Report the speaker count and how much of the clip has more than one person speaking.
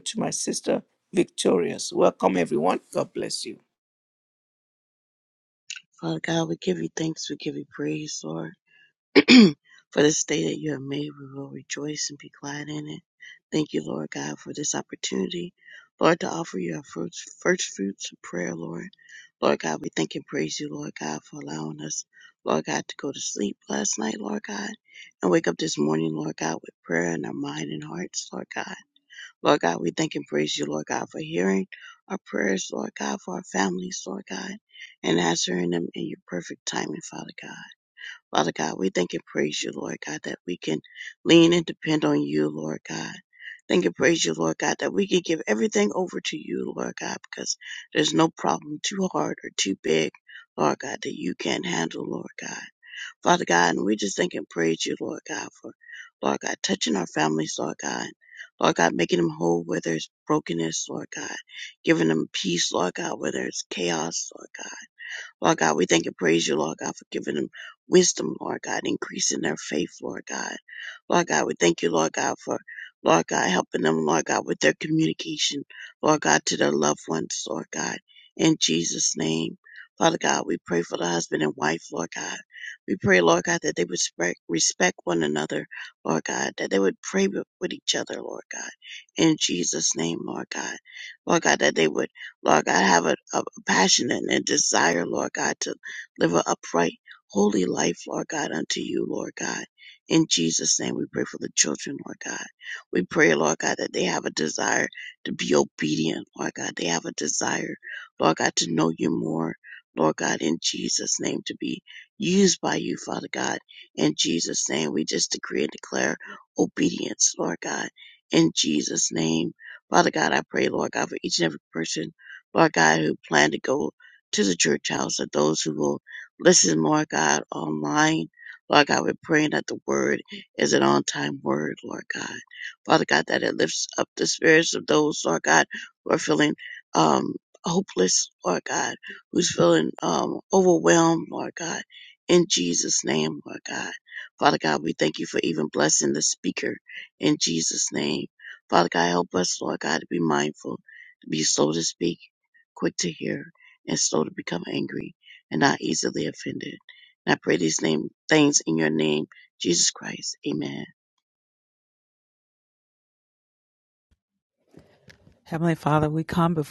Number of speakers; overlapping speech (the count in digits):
3, no overlap